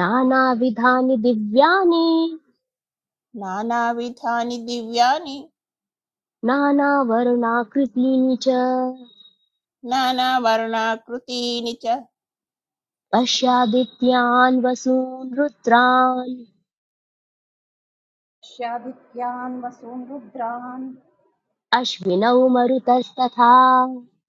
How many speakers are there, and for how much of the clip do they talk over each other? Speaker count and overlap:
3, no overlap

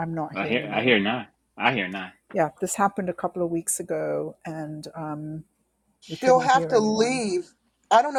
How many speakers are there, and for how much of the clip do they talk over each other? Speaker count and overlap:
3, about 20%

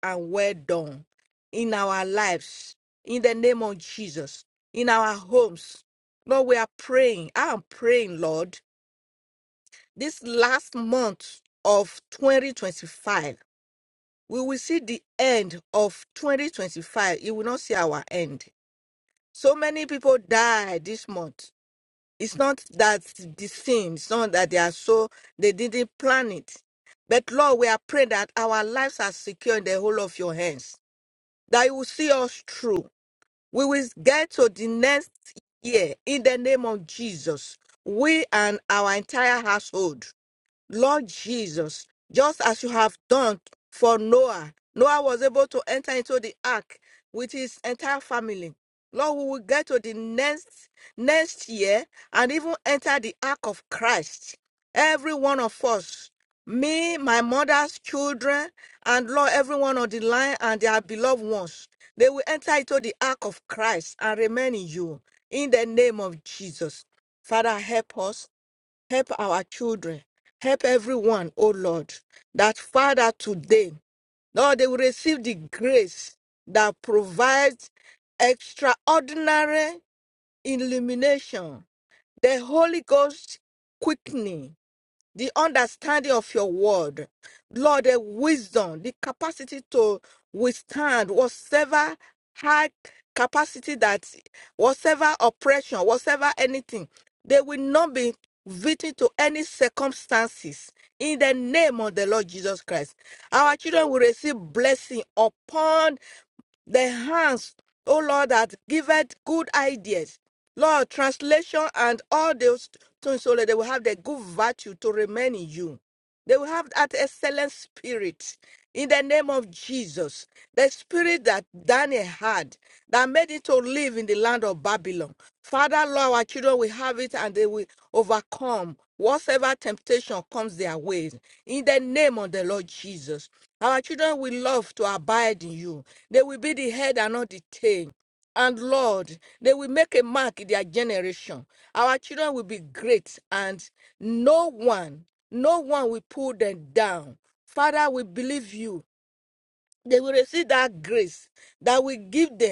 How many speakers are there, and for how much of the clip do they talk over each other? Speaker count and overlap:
1, no overlap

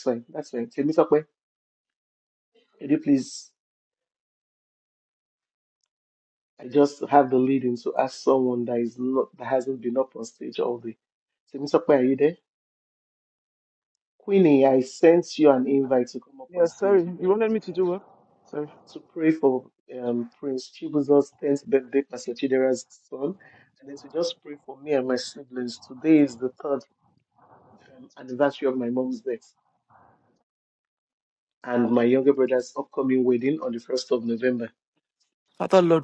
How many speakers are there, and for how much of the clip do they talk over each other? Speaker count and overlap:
2, about 2%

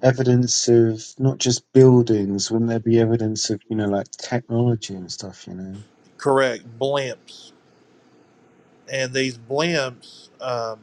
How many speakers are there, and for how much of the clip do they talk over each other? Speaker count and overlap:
2, no overlap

